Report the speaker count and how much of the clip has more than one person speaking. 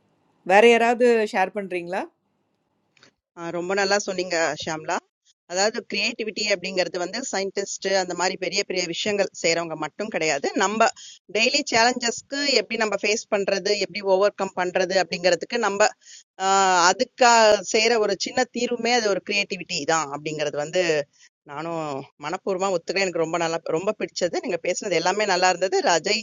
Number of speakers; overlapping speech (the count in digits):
2, no overlap